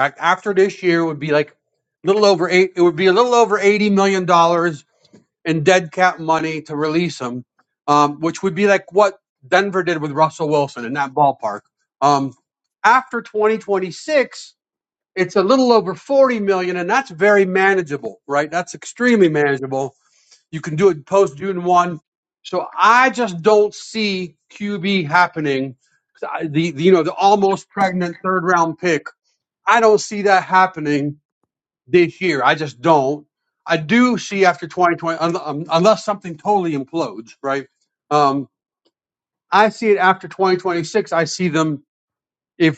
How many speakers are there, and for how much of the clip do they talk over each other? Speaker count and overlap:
one, no overlap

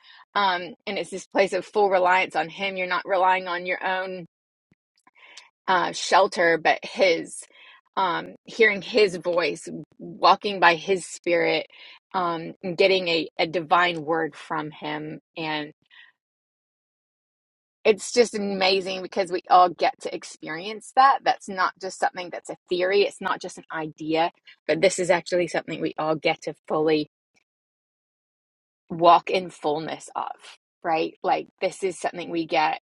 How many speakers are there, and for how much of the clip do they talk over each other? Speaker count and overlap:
one, no overlap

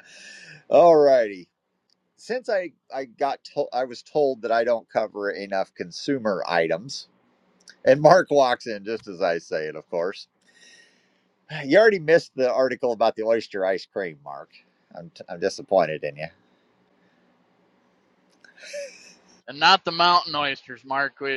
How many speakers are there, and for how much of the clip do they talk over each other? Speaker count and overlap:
two, no overlap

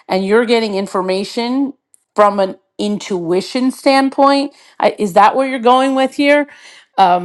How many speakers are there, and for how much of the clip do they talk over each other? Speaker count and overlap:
one, no overlap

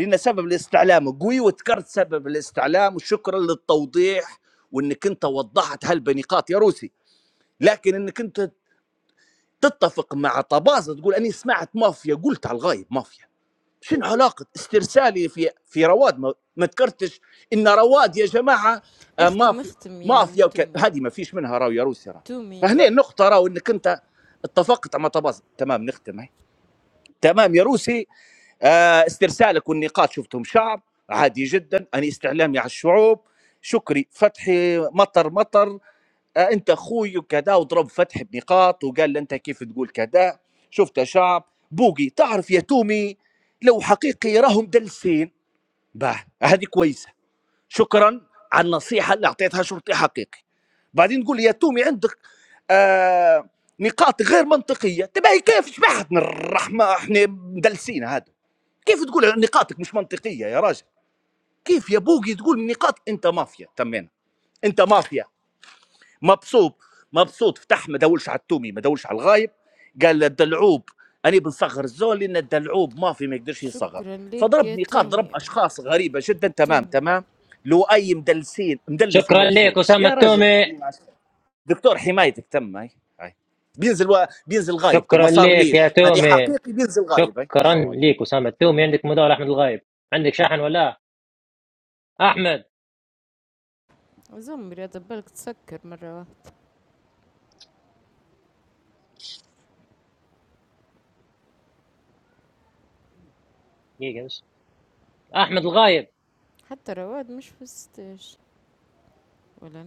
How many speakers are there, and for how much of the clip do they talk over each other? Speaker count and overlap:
three, about 7%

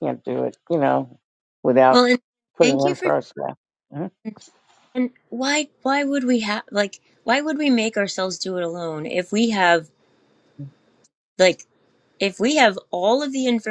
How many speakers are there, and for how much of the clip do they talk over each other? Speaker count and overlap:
two, about 4%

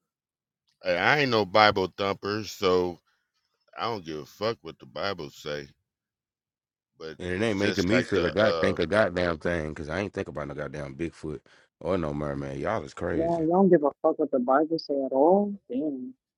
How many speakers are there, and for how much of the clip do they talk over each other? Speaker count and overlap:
three, about 11%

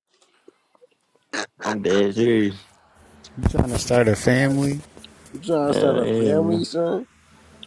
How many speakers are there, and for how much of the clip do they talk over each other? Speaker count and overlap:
three, about 12%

